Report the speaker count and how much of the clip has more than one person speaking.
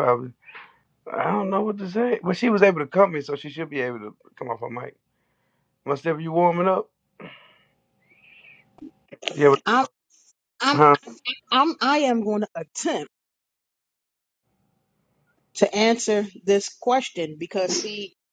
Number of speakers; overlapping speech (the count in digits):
2, about 1%